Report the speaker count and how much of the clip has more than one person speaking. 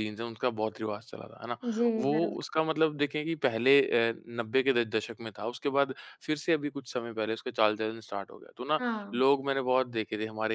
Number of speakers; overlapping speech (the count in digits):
2, about 8%